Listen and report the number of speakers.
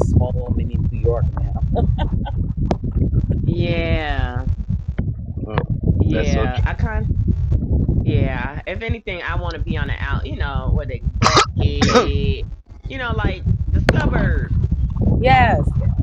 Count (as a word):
three